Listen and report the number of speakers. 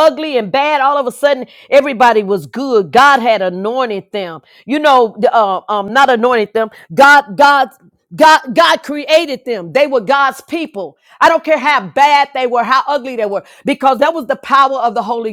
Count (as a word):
one